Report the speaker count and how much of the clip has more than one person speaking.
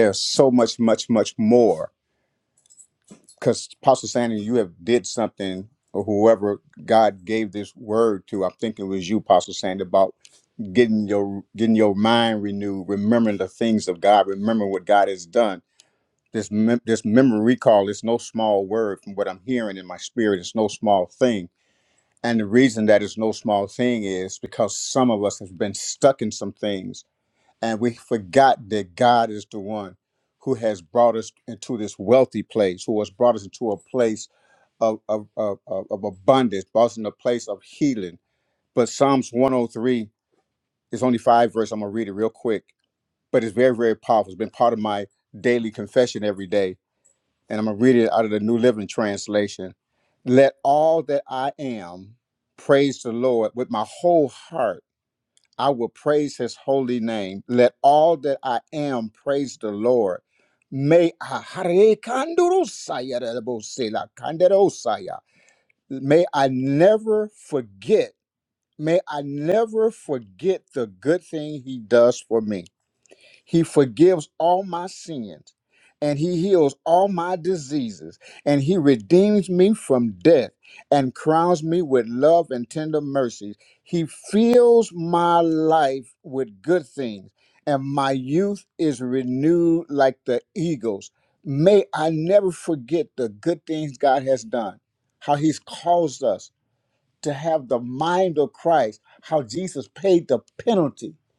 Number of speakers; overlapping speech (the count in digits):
1, no overlap